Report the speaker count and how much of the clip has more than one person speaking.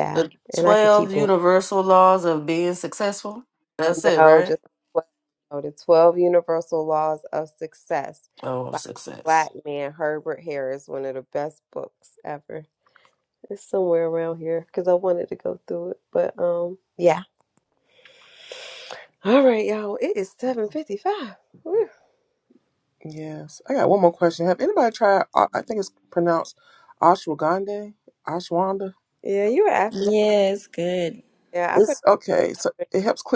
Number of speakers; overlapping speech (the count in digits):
4, about 6%